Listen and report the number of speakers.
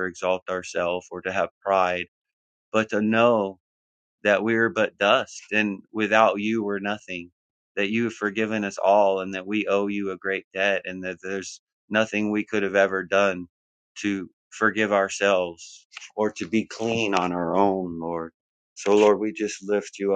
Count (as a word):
one